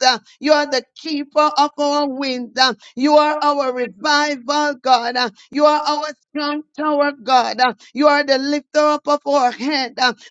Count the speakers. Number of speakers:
one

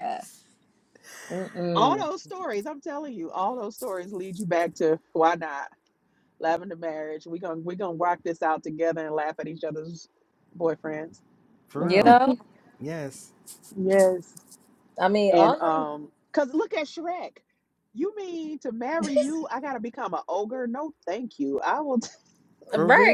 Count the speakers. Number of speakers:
three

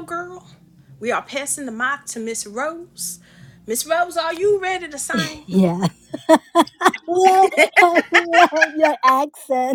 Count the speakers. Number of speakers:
two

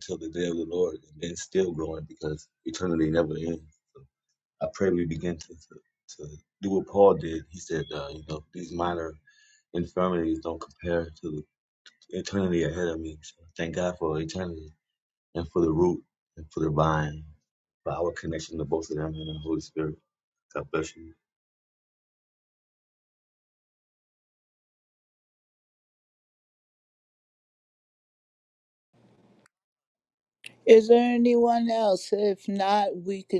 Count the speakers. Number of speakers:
two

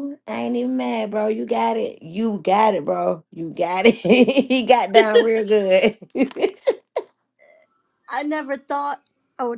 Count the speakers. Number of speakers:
two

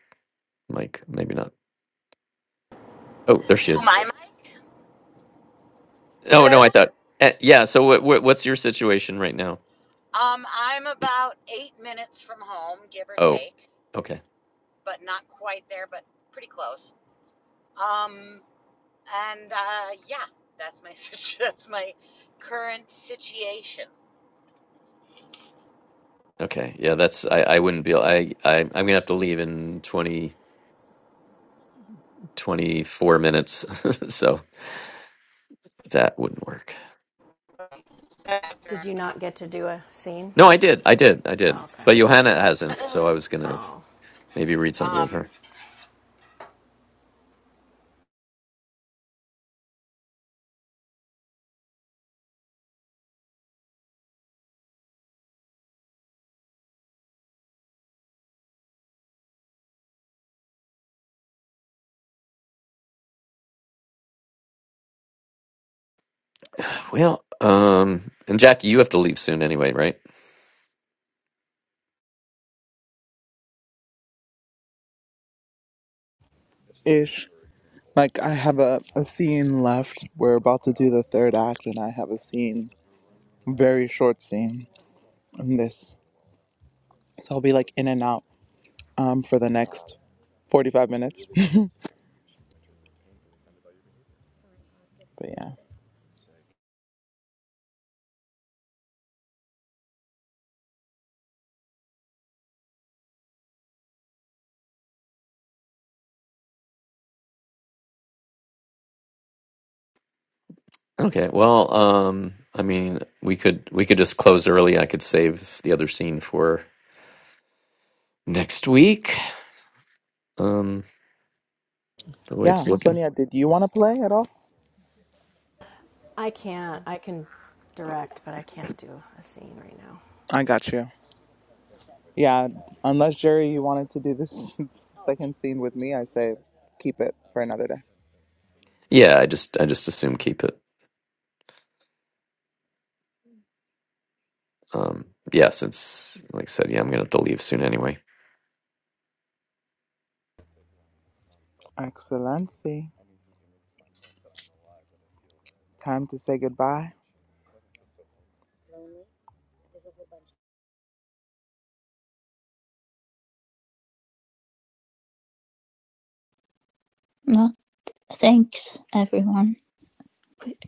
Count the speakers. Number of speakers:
five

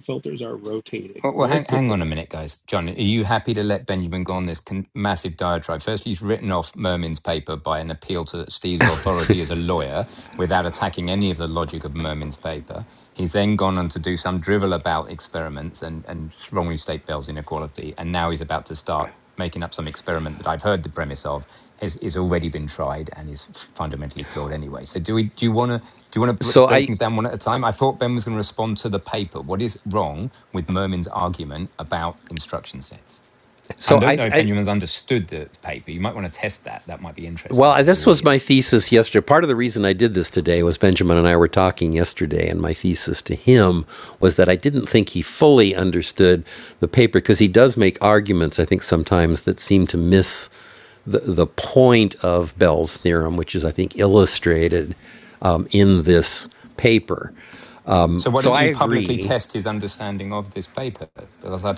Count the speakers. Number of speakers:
three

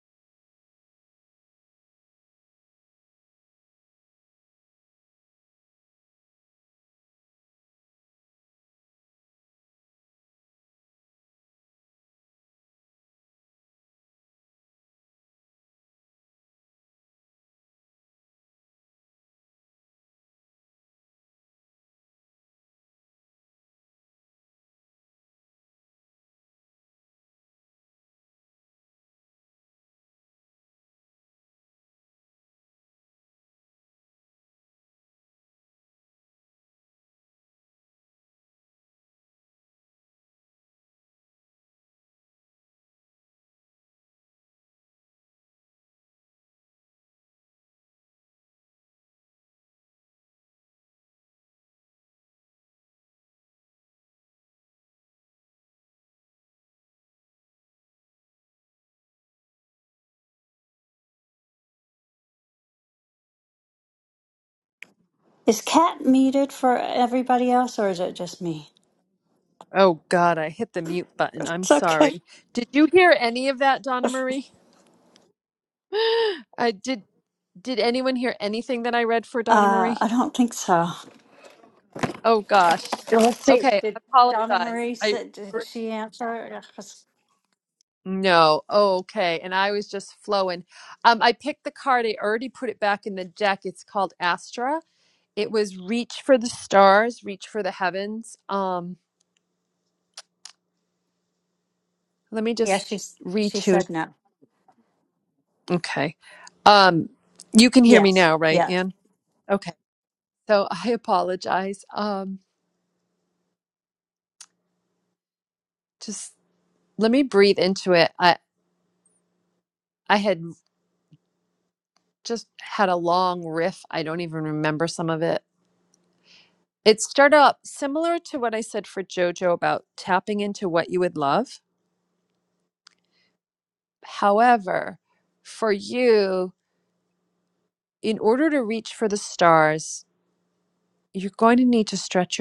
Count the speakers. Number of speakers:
two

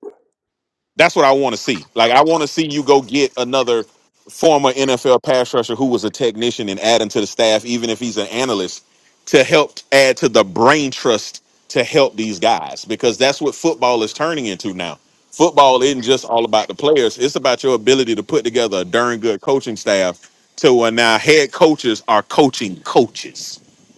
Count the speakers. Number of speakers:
one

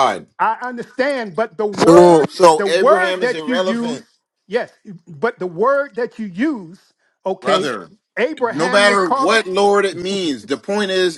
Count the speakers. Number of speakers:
two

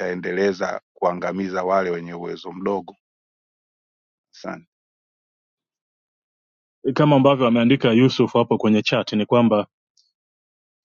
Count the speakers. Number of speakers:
two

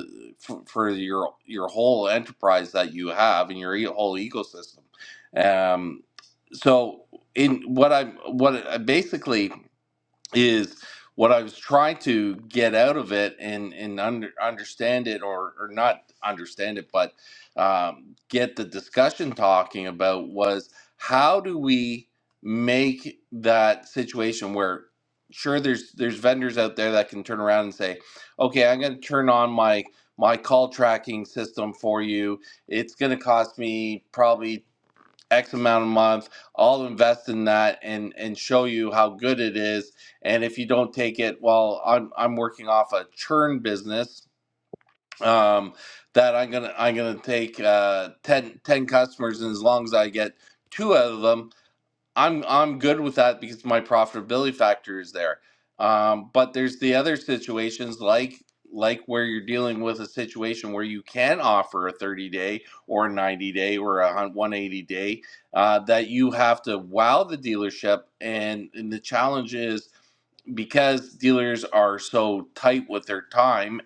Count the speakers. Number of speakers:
one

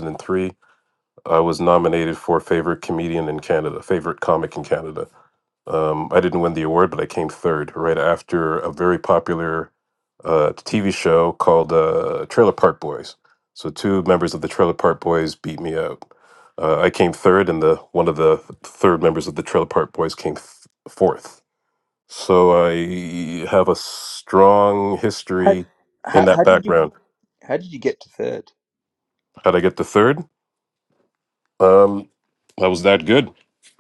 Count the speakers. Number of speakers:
two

